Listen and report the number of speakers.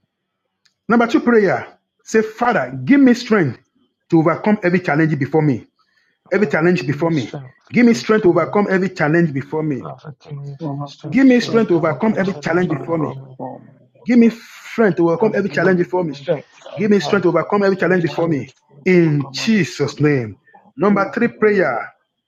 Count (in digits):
3